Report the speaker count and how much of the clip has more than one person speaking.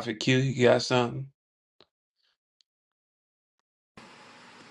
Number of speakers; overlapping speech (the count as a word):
one, no overlap